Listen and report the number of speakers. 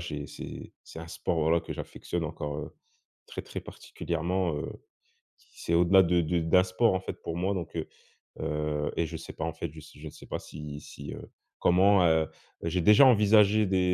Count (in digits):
1